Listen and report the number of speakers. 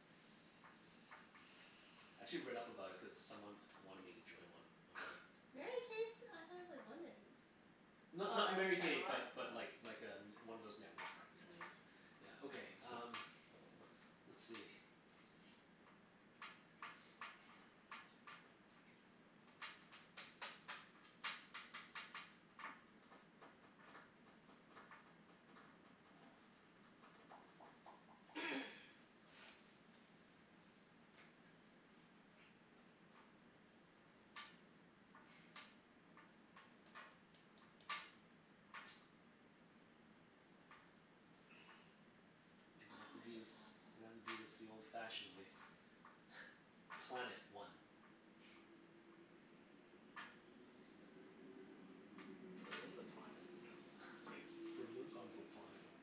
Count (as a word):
three